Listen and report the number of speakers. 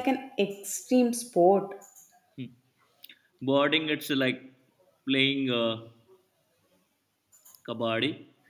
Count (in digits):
2